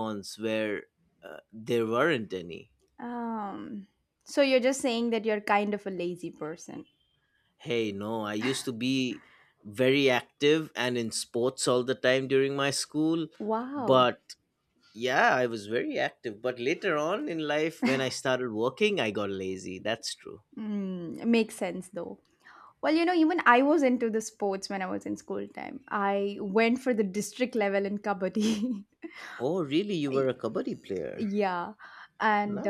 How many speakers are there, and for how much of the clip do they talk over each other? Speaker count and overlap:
two, about 2%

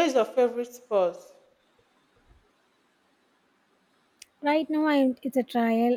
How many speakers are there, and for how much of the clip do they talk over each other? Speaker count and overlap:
two, no overlap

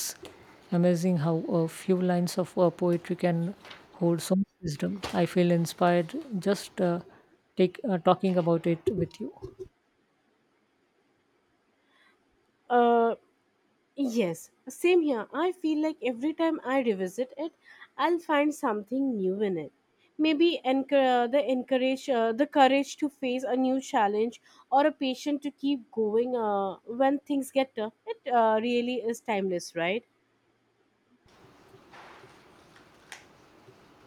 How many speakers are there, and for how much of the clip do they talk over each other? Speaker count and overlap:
two, no overlap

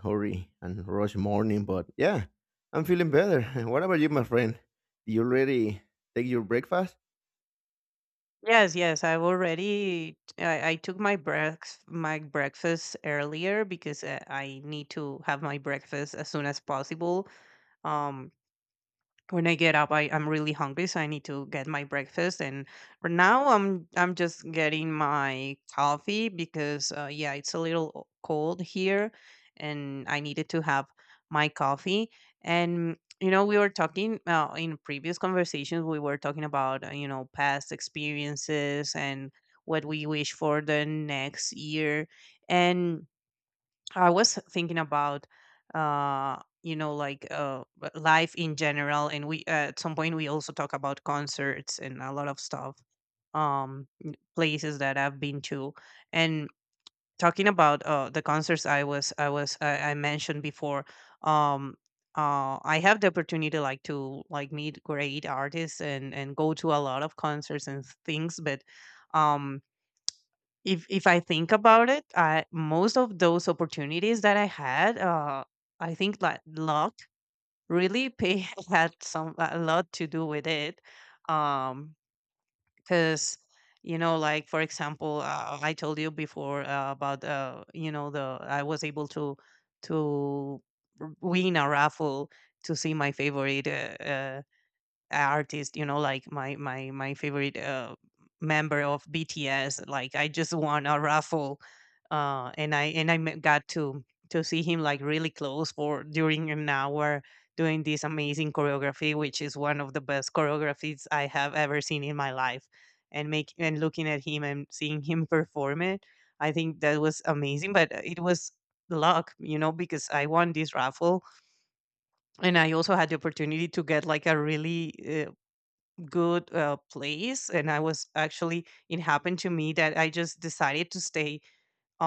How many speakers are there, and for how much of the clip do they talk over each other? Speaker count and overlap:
two, no overlap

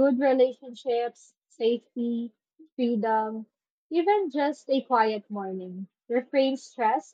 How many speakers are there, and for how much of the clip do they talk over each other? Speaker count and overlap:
one, no overlap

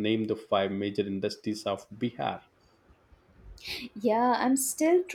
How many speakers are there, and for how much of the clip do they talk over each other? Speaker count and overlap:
two, no overlap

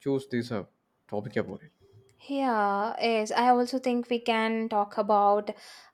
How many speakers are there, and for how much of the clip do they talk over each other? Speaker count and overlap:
two, no overlap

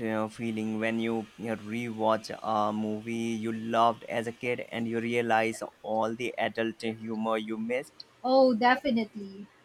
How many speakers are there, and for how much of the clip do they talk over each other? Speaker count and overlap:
two, no overlap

